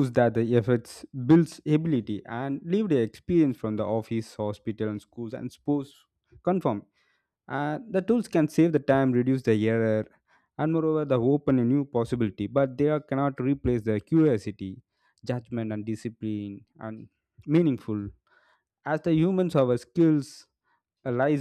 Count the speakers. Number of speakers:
one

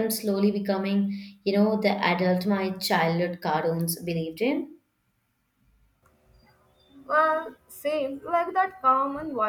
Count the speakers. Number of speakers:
two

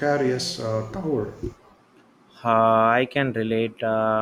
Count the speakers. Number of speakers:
two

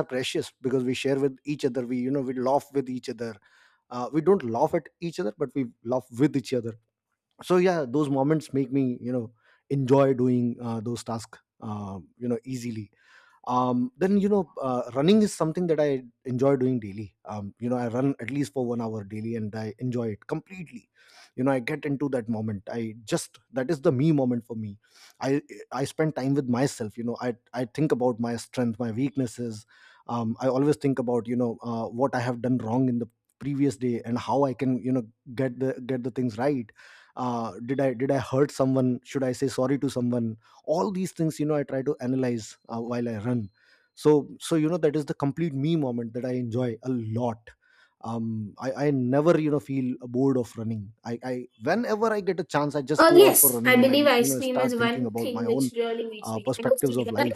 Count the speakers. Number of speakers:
two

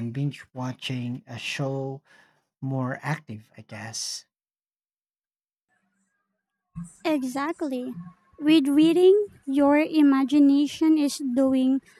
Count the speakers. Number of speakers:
two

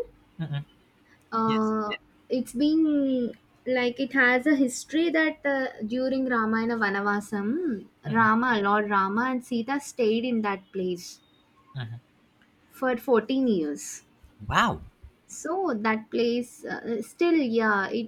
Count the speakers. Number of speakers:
two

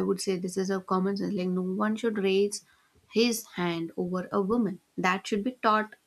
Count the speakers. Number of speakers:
one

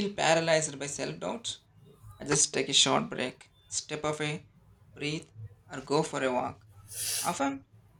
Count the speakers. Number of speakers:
one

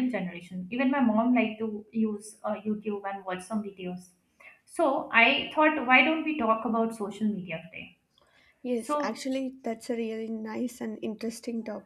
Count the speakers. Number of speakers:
two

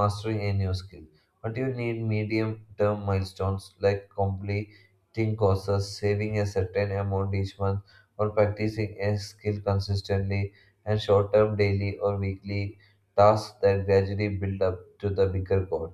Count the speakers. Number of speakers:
one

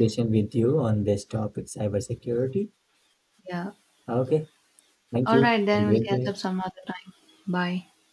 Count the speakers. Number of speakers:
two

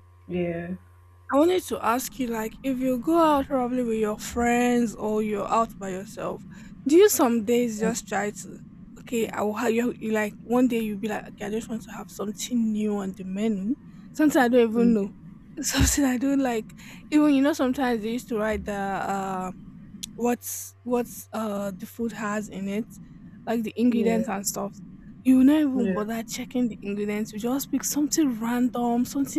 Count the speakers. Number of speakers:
two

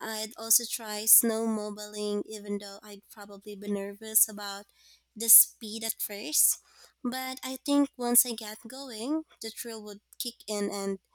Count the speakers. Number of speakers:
one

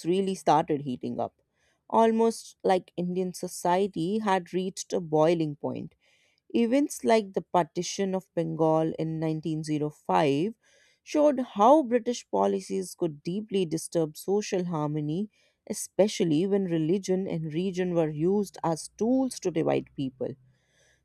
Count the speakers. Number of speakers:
one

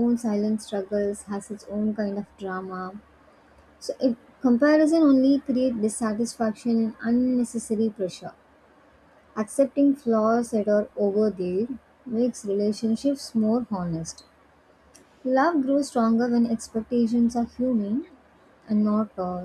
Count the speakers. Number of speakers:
one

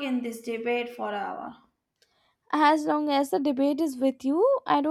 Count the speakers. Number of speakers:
two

